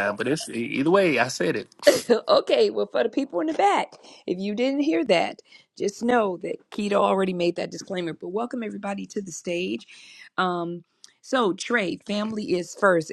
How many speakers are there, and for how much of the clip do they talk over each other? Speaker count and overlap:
2, no overlap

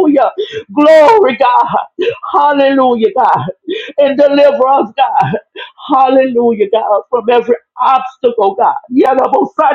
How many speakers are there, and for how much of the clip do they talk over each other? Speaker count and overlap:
1, no overlap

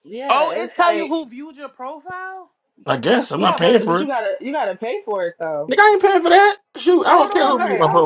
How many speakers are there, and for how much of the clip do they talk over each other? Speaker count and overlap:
3, about 31%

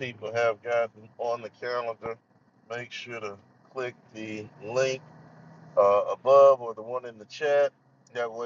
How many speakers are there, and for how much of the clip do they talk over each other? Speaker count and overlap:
1, no overlap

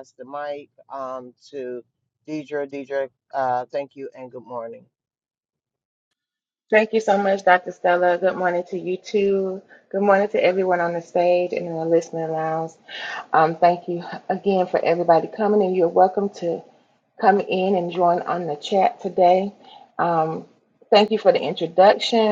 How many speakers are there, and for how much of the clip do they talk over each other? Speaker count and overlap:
2, no overlap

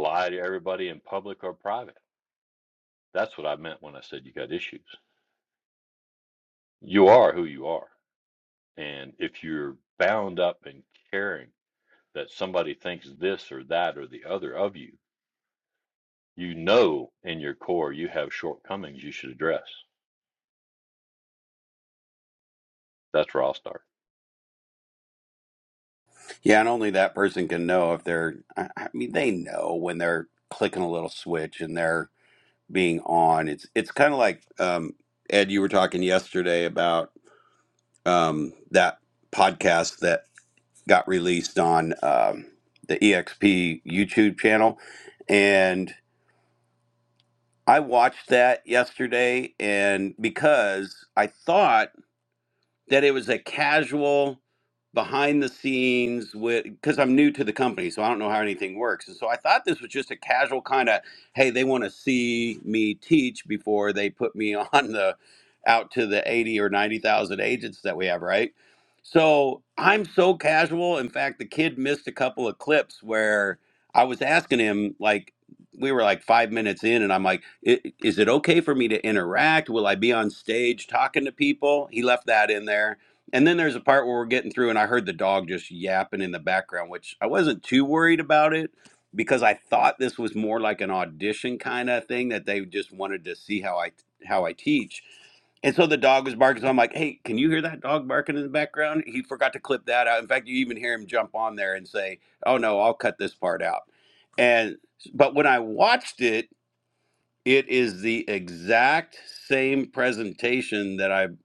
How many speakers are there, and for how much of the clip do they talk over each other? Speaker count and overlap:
2, no overlap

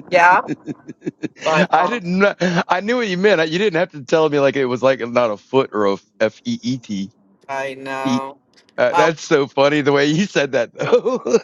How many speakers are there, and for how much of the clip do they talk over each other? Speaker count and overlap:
2, about 4%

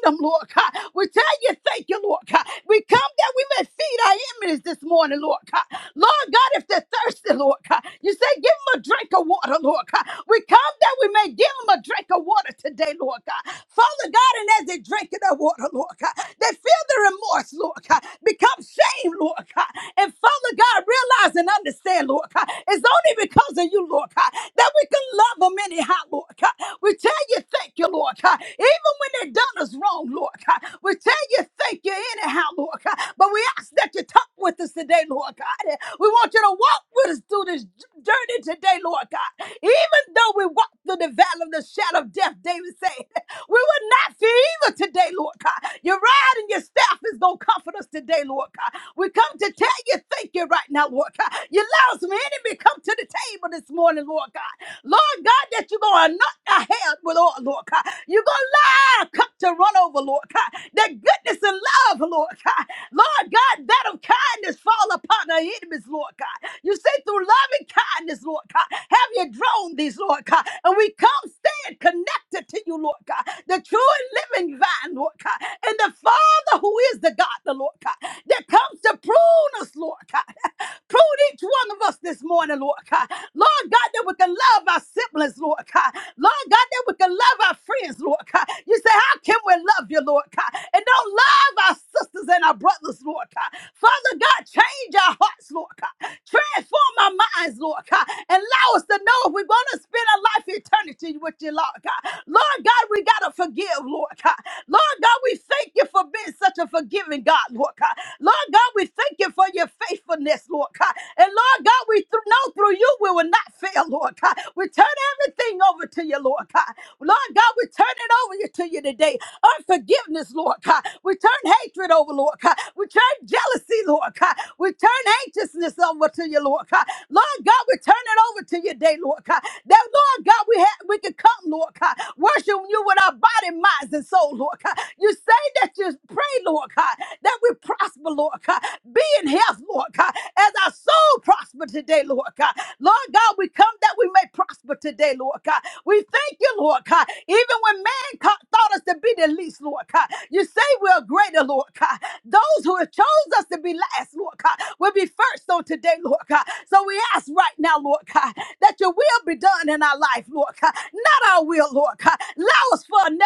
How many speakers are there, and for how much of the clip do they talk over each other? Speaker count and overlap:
1, no overlap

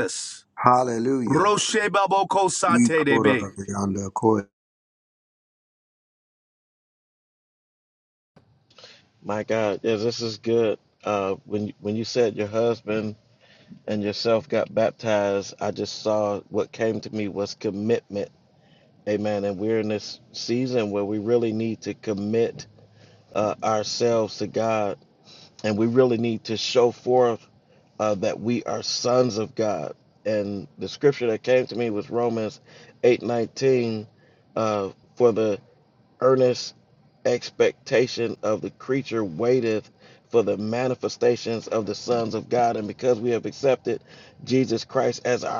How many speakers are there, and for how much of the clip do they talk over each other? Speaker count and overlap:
3, about 2%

